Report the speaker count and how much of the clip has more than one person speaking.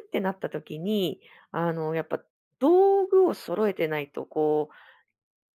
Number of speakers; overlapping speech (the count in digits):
1, no overlap